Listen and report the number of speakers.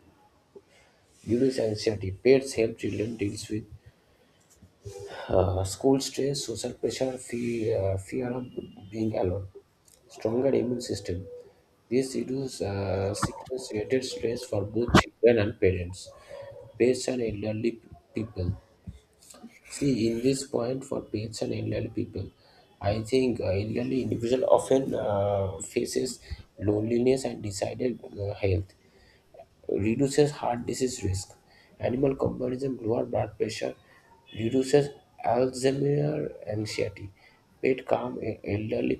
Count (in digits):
1